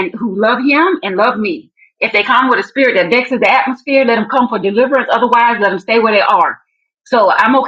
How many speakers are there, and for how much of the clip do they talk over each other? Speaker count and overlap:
one, no overlap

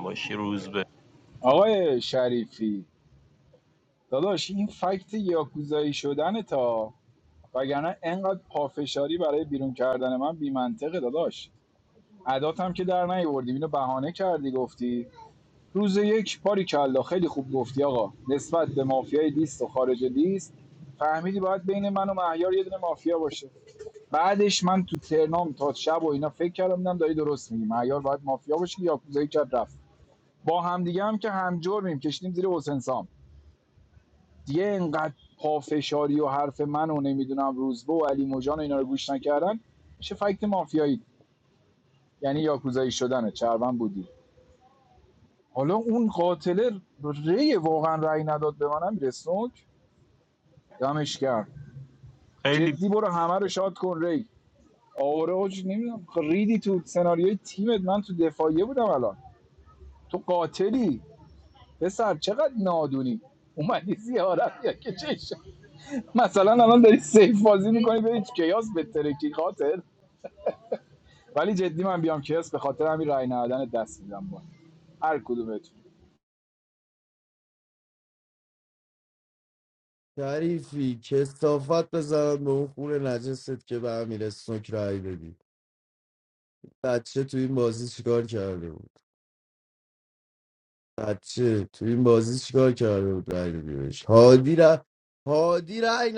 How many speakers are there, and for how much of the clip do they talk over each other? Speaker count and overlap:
three, under 1%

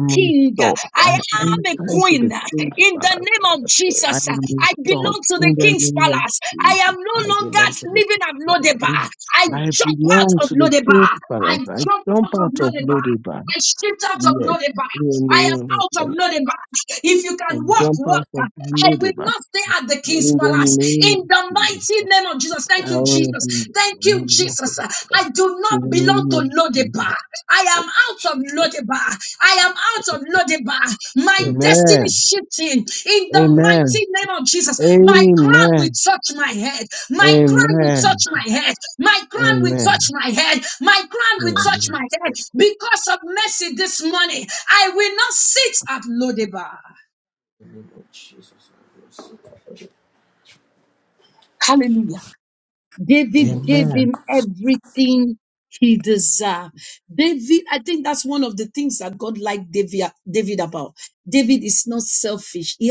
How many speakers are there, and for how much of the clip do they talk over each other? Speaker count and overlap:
three, about 38%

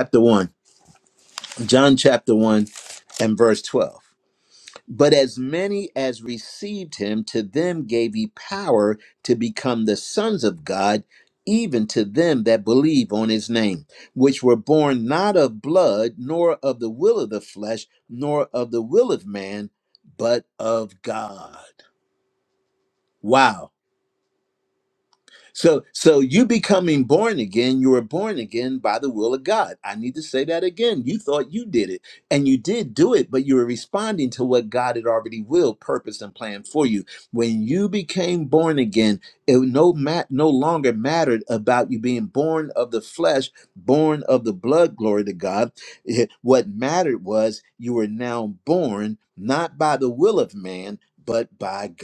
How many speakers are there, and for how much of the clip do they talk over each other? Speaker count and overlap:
one, no overlap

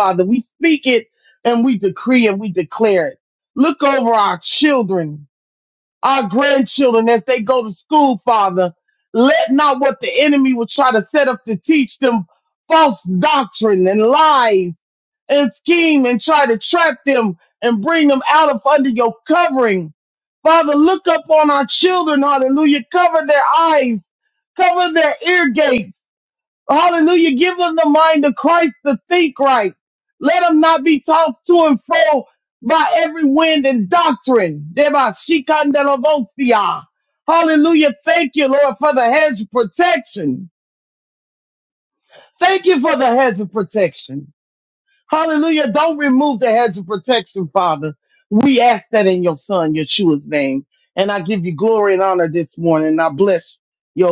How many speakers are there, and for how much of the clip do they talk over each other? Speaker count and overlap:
one, no overlap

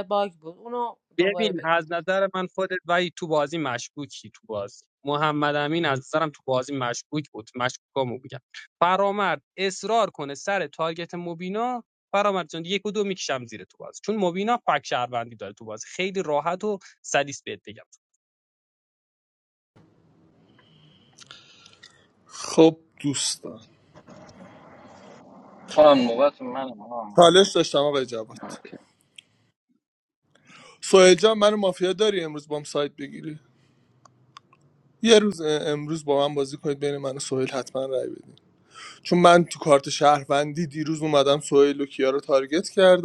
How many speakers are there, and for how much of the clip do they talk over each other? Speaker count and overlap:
four, about 2%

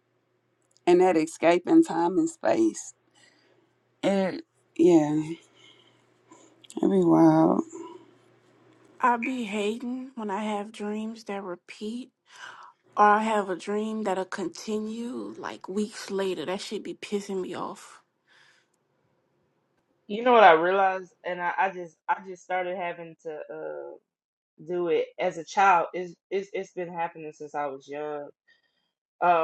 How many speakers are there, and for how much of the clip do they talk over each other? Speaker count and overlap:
three, no overlap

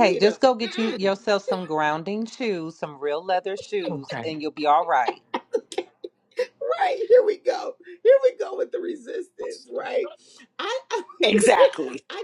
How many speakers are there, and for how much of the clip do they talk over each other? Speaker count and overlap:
three, about 8%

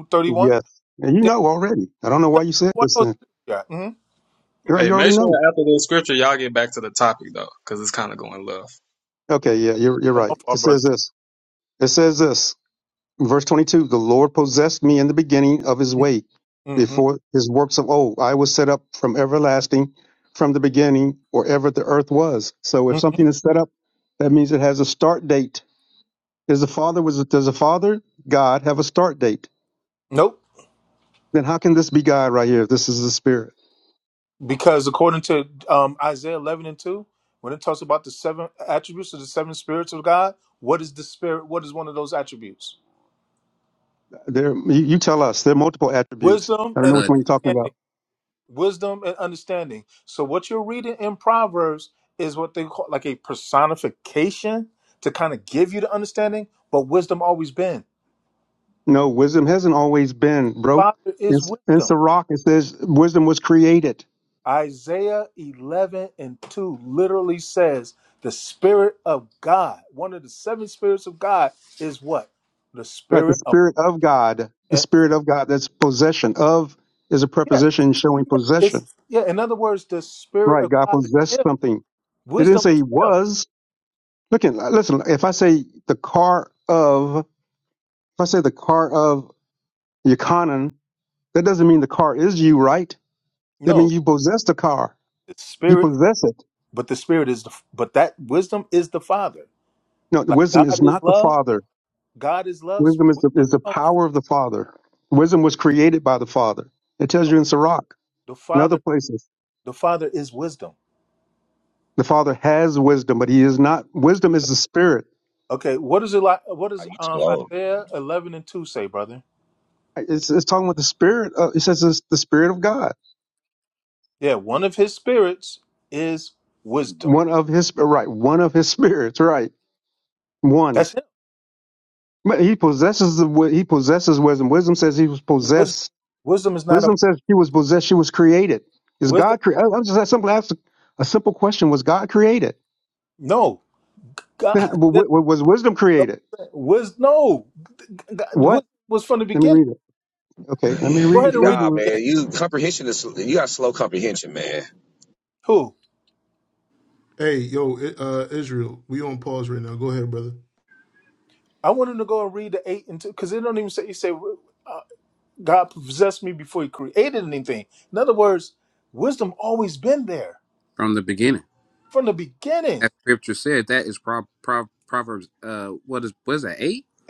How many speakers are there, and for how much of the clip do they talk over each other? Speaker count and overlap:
six, about 7%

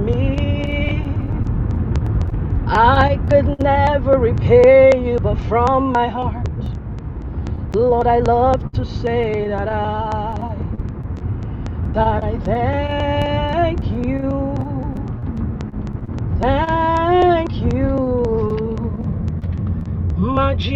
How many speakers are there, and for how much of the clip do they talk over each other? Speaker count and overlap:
one, no overlap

